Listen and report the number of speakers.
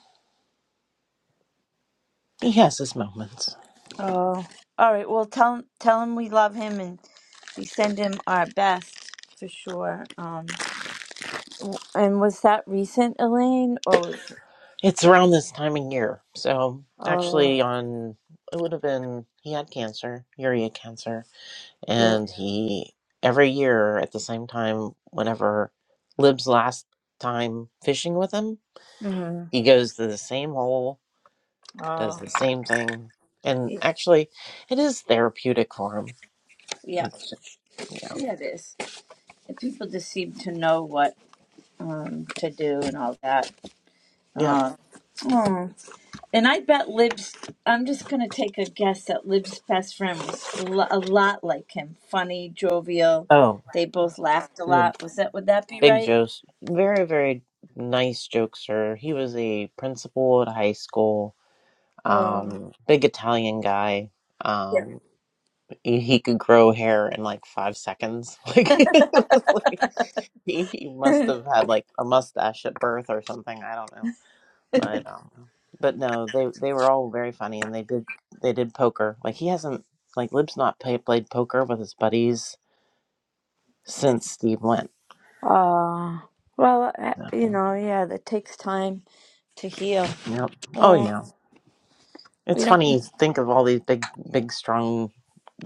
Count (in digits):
2